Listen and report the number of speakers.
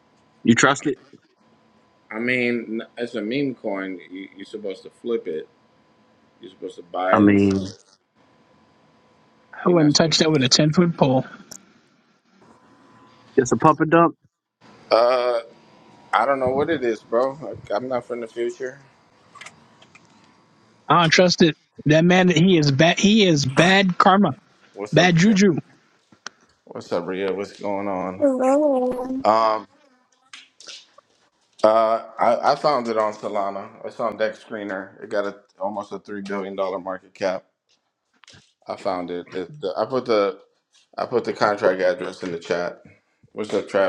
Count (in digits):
4